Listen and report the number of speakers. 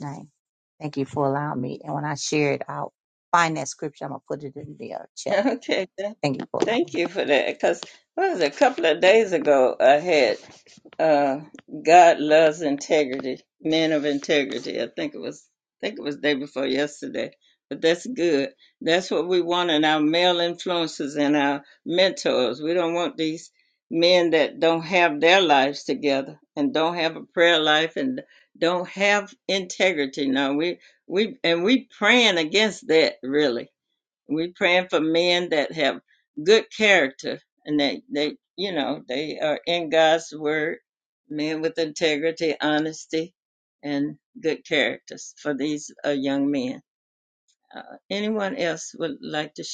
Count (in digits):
2